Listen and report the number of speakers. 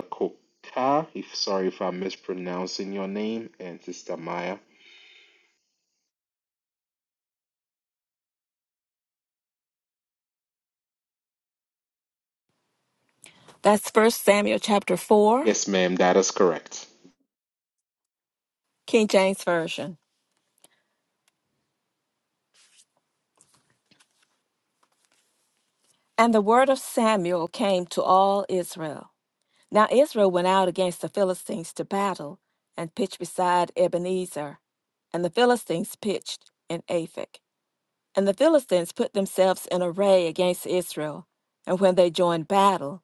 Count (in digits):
2